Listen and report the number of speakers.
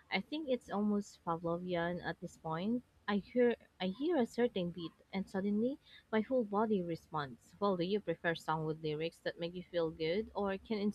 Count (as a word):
one